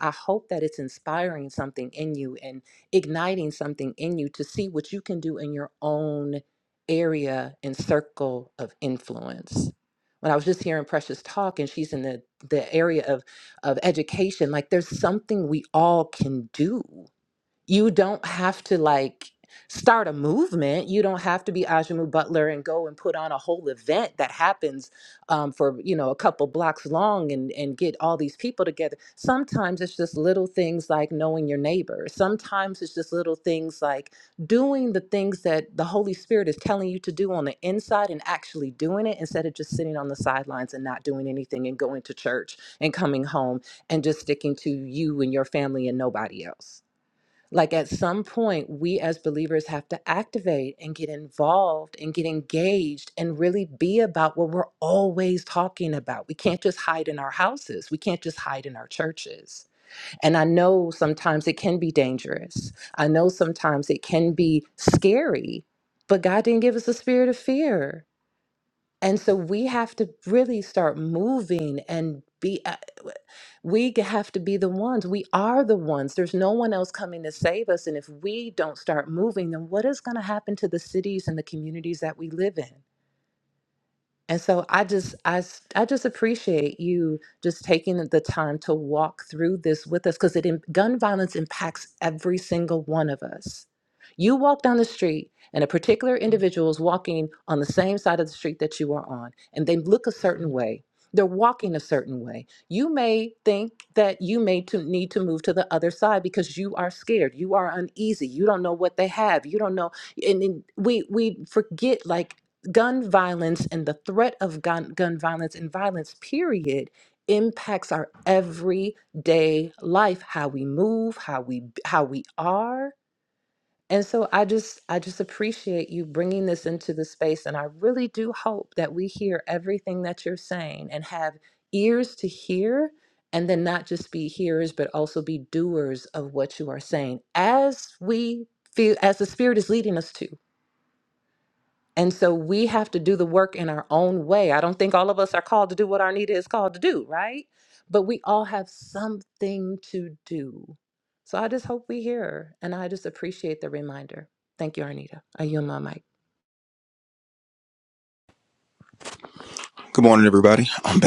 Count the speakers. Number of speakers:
2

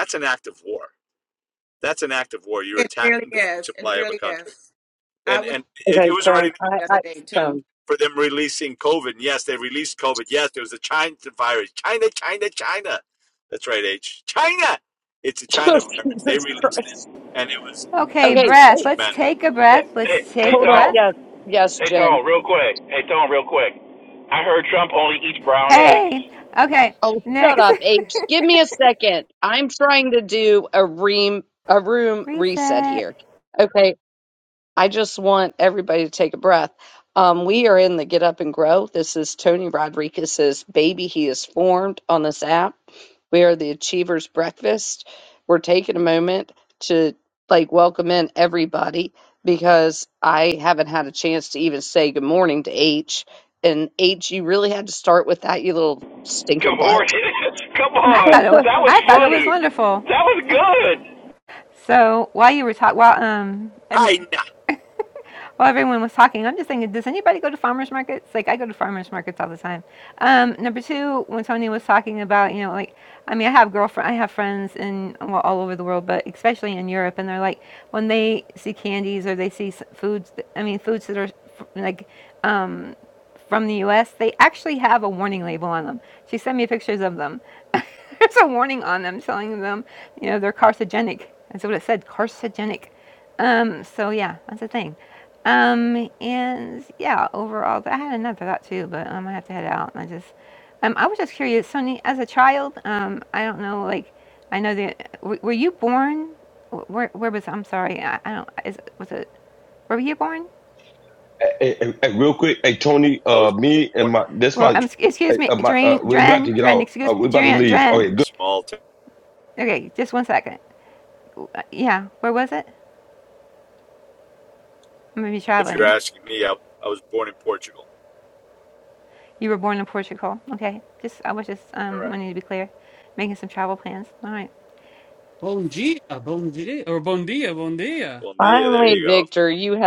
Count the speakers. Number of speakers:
7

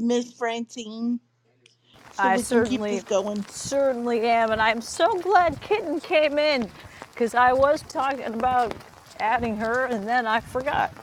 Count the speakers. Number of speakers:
2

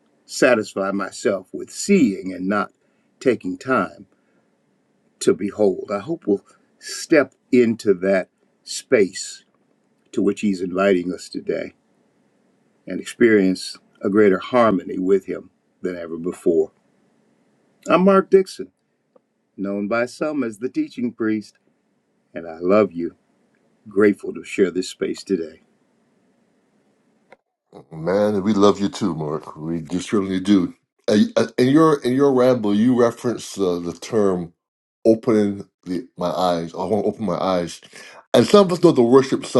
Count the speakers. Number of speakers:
2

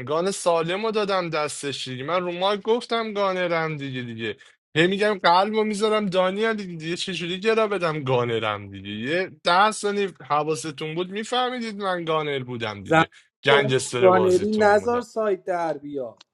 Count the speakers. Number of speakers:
2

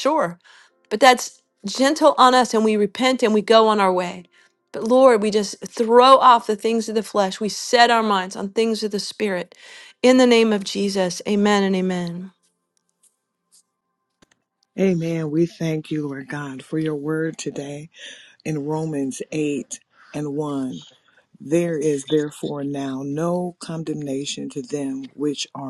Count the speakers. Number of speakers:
2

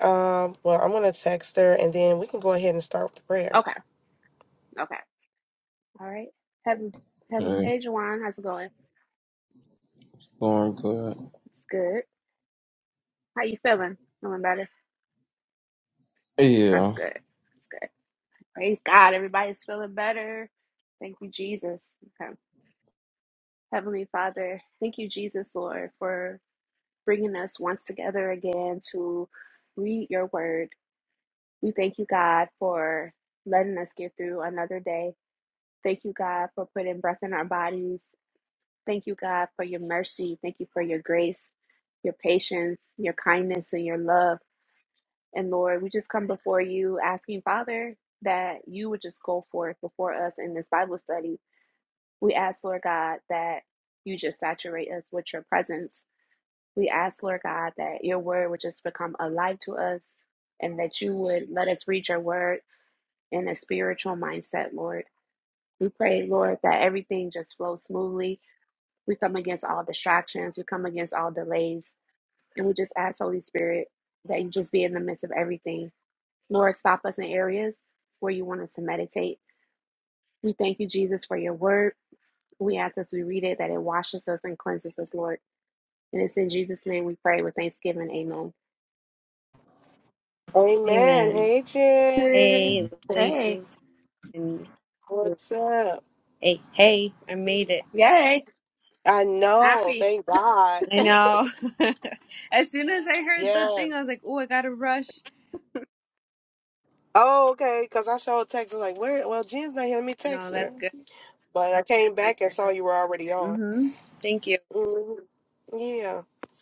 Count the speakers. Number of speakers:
4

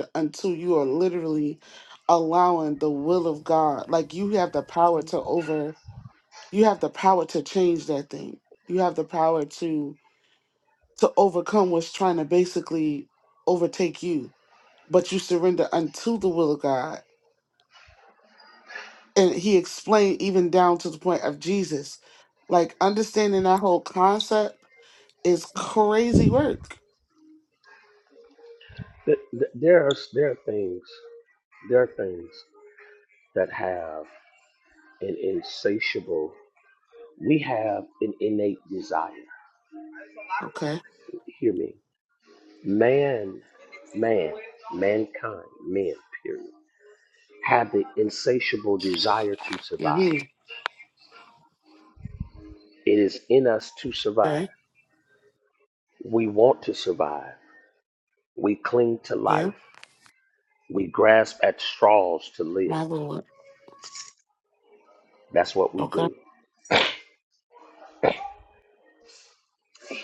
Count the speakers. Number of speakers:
2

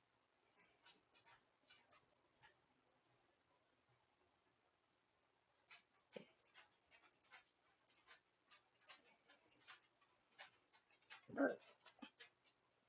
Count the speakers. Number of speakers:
0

